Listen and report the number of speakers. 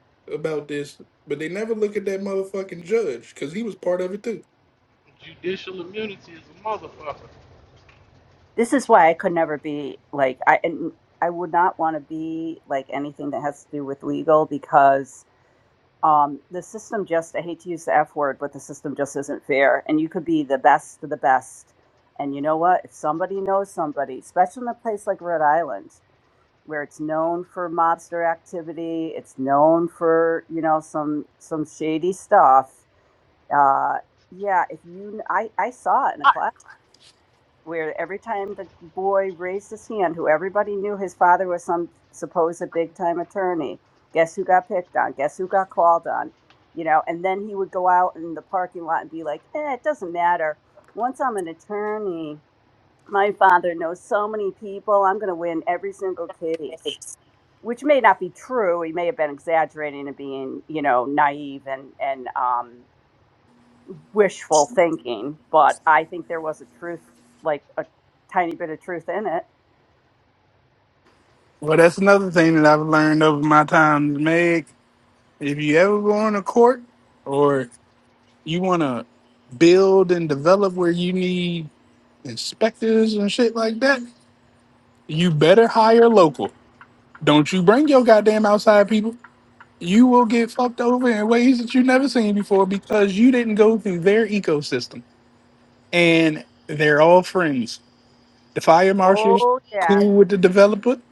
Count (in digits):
3